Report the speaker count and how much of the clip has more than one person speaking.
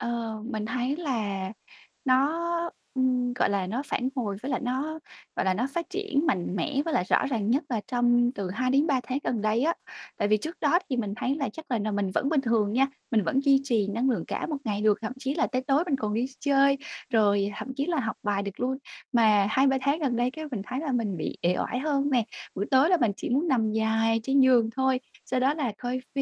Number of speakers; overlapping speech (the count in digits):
1, no overlap